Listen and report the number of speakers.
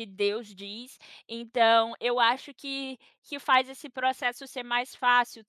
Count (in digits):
1